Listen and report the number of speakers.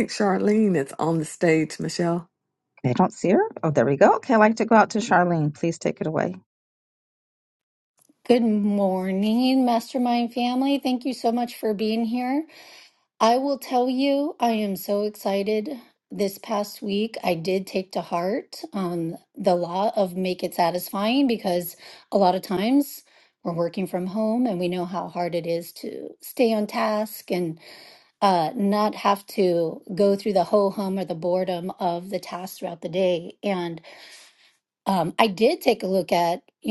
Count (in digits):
3